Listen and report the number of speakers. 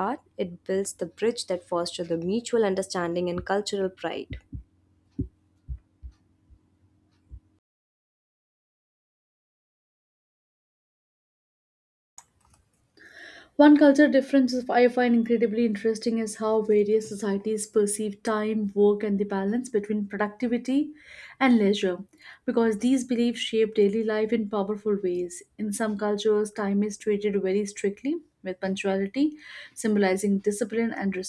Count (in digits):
2